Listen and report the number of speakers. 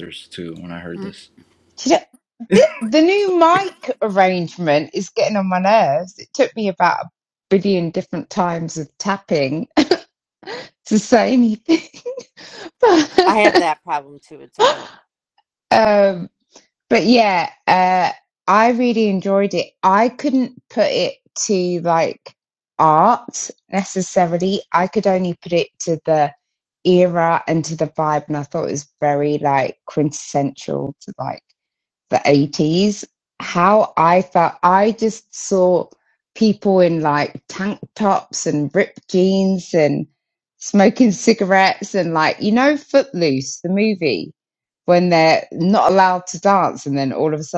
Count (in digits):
3